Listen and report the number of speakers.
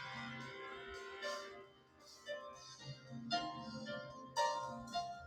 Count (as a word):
zero